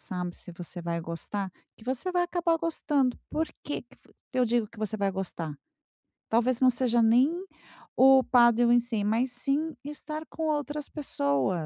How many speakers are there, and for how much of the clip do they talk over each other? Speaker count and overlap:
1, no overlap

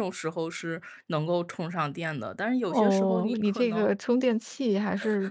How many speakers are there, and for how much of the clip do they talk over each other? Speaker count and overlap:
2, about 23%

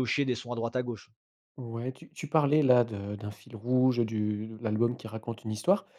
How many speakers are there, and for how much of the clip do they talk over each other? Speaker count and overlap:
2, no overlap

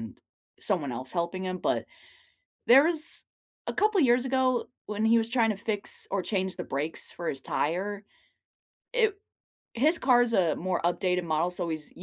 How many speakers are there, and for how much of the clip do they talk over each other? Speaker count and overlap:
1, no overlap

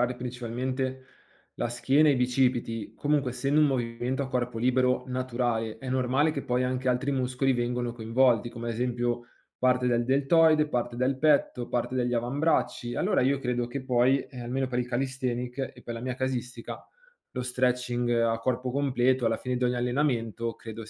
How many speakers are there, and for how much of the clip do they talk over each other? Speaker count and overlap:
1, no overlap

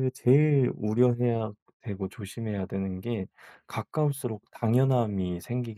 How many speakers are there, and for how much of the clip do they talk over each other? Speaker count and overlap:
1, no overlap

